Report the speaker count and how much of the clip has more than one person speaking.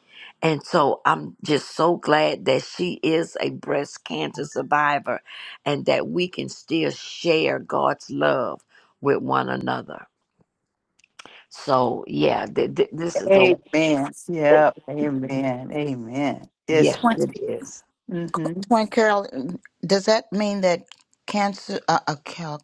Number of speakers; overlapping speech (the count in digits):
3, about 3%